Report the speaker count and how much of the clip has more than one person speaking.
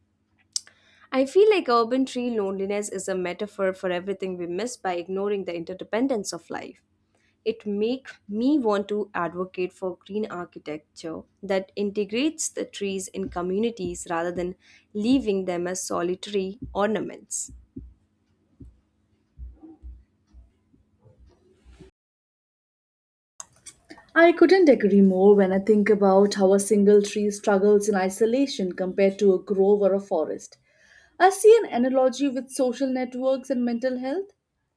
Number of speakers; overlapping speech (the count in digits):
2, no overlap